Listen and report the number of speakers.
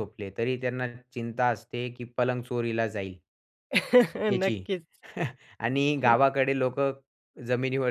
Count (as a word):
two